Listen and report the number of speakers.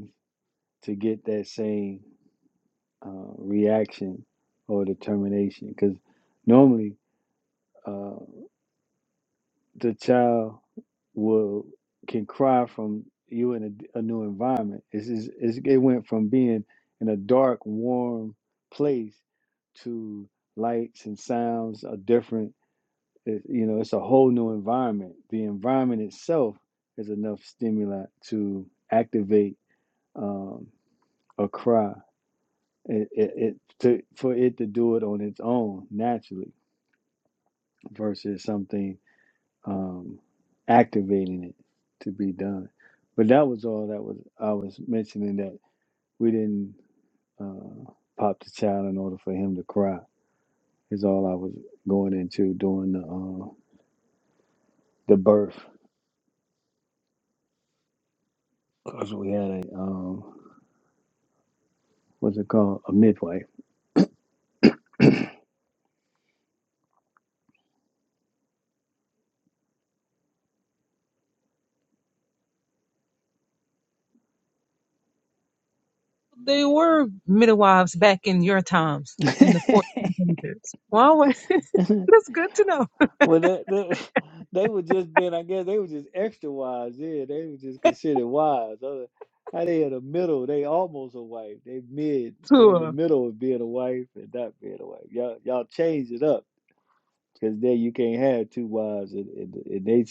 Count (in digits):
2